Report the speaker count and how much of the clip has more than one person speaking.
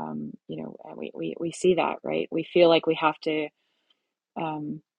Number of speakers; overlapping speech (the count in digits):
1, no overlap